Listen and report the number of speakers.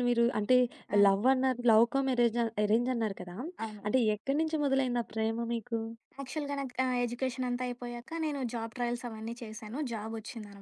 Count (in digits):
2